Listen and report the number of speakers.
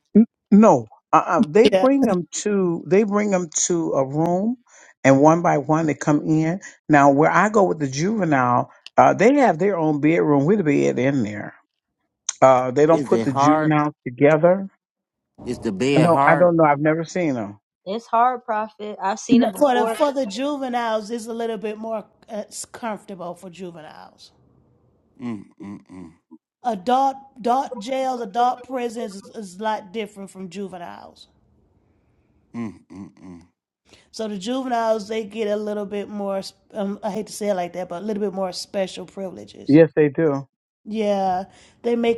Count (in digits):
4